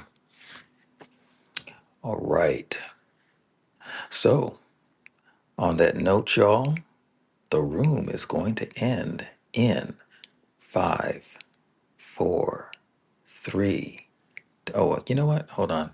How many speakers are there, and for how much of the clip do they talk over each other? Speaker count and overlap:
1, no overlap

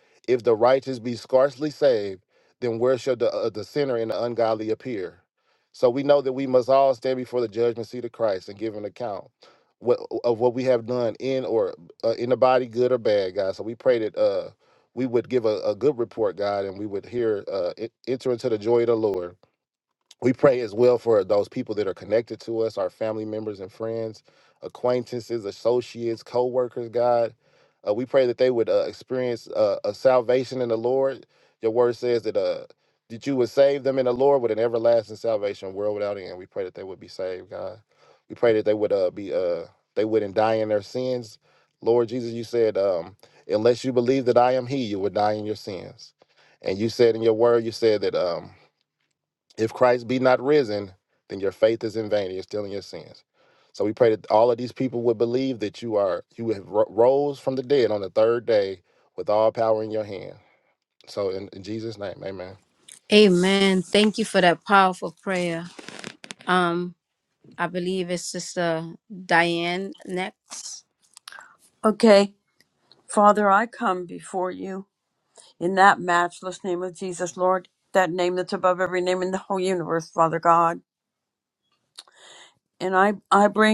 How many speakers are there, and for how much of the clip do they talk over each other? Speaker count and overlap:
3, no overlap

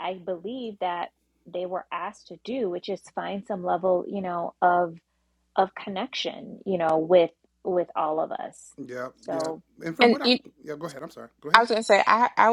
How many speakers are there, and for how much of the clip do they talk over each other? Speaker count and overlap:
3, about 6%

